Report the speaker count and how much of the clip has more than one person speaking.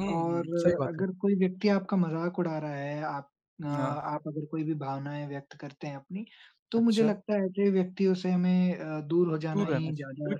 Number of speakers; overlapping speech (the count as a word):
two, about 21%